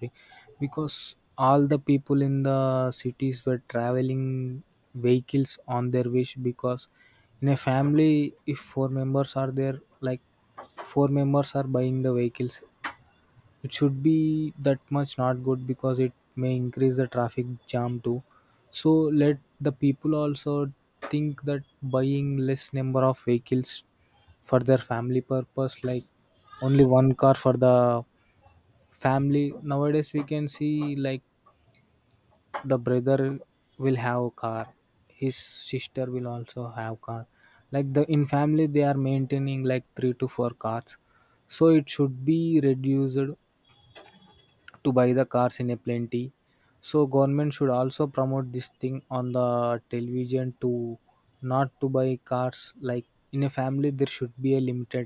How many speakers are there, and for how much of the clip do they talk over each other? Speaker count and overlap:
one, no overlap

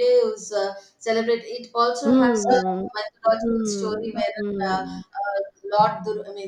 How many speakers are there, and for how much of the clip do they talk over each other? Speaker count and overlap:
two, about 38%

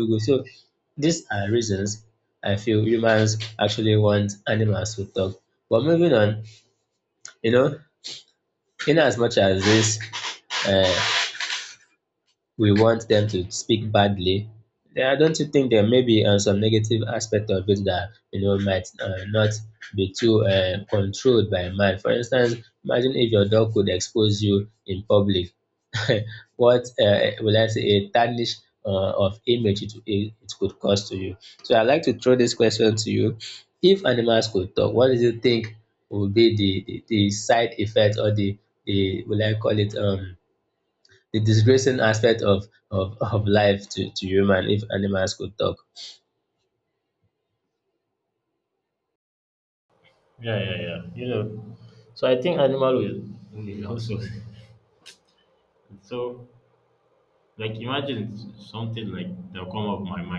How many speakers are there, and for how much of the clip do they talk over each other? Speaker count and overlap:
two, no overlap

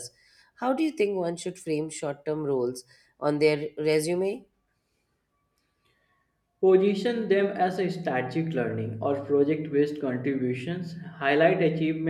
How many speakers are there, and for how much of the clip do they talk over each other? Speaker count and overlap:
two, no overlap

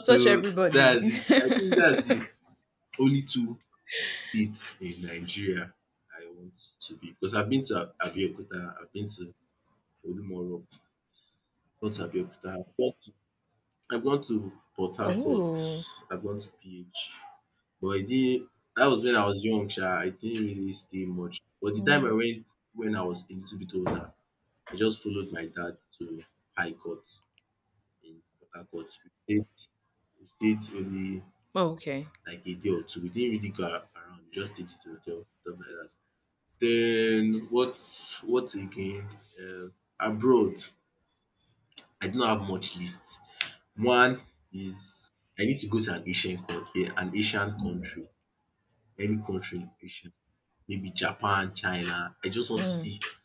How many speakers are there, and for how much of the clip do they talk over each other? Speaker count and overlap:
two, about 4%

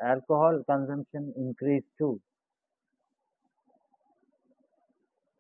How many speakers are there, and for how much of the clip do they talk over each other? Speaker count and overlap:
one, no overlap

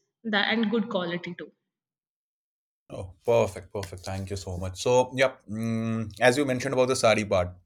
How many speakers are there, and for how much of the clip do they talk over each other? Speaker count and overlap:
two, no overlap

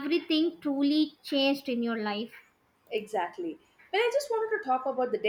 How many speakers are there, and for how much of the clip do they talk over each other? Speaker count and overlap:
two, no overlap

